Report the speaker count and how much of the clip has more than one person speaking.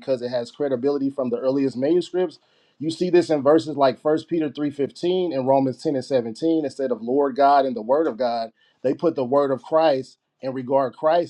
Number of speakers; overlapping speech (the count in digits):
1, no overlap